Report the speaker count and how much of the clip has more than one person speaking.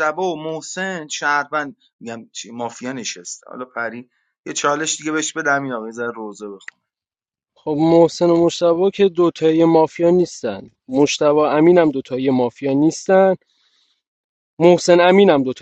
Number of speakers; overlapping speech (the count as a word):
two, no overlap